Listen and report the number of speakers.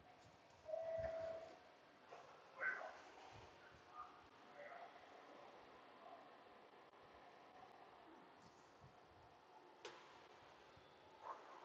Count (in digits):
0